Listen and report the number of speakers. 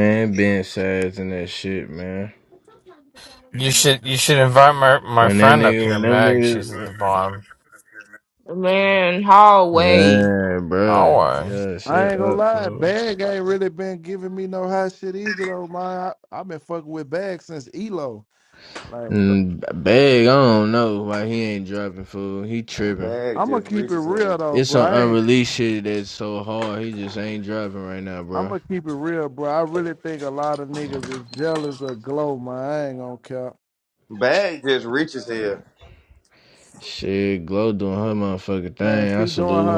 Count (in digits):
5